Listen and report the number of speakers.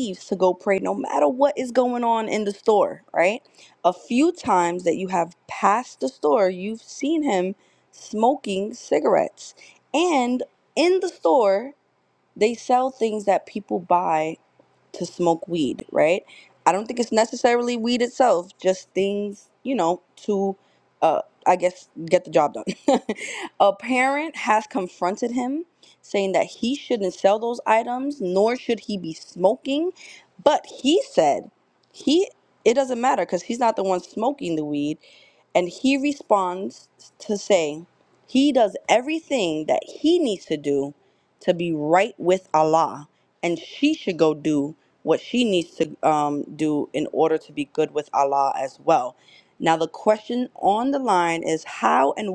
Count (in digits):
1